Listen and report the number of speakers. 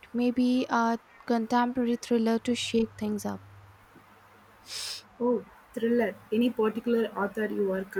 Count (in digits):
2